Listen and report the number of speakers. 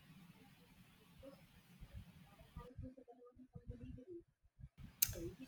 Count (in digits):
0